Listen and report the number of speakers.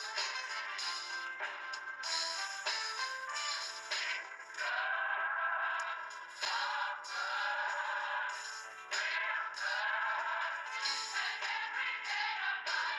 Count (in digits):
0